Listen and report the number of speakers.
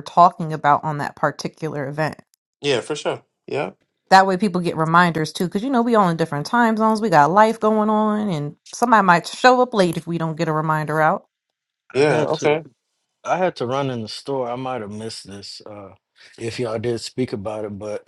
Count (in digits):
3